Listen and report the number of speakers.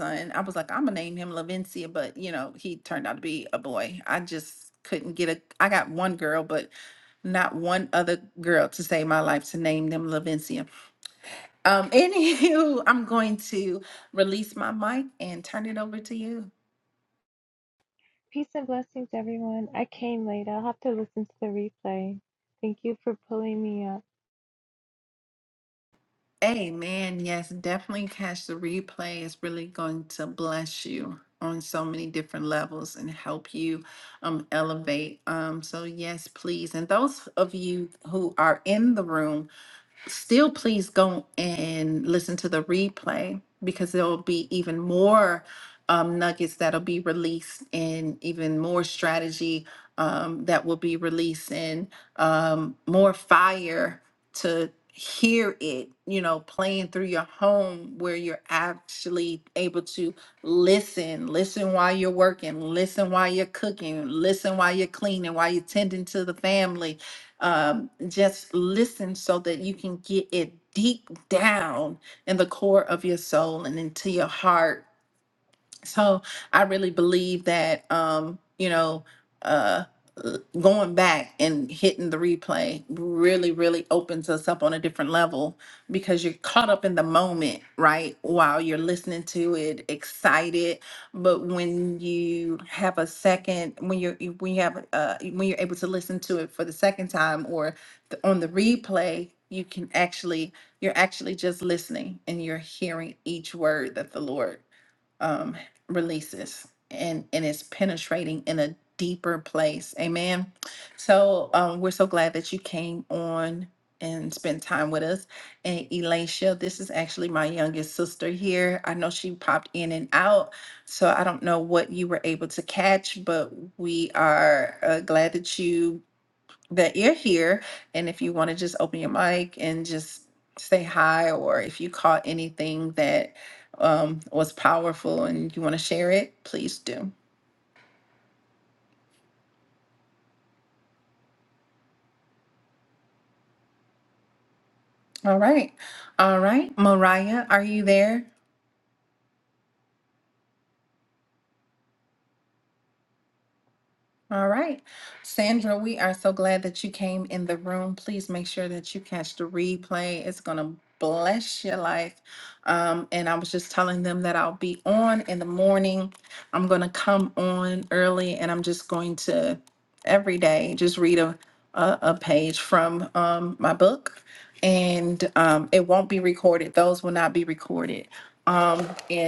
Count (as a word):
two